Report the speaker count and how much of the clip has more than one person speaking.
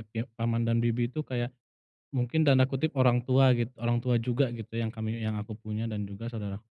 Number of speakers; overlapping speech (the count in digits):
1, no overlap